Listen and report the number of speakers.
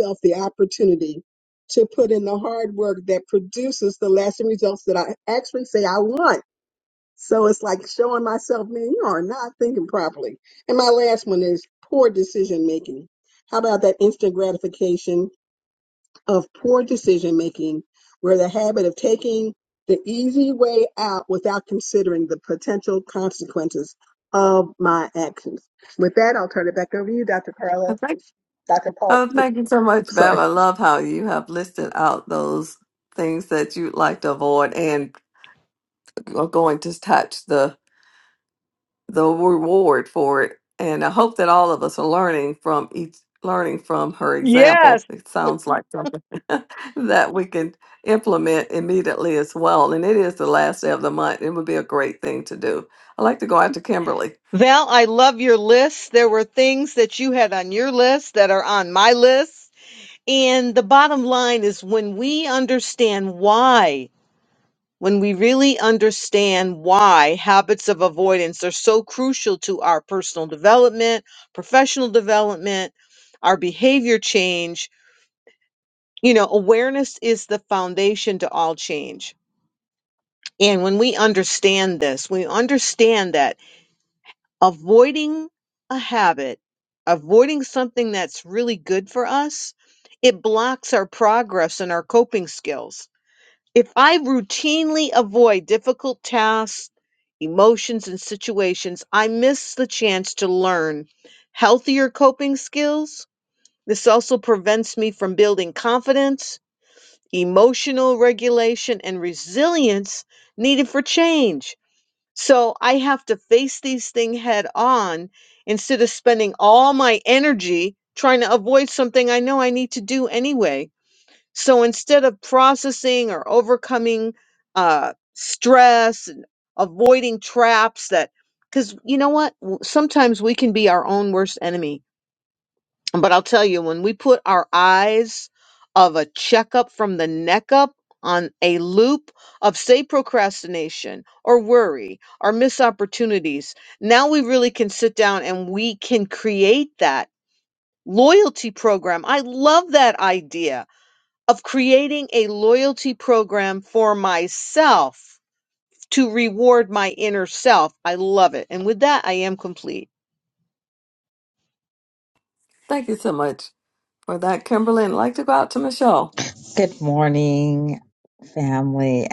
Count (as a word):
four